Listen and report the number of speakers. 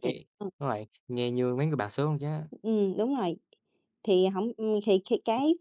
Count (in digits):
2